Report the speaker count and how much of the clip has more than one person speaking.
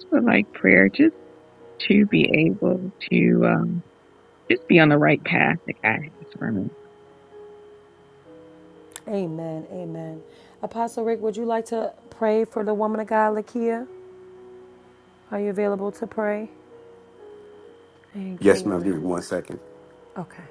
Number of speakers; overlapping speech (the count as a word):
three, about 2%